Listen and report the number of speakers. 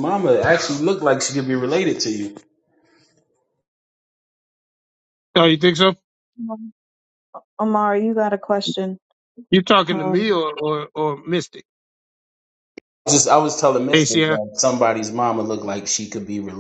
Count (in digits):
3